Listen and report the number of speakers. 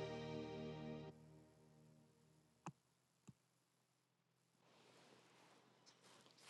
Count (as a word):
zero